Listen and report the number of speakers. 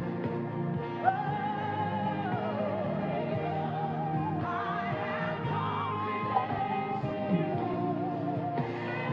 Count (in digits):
0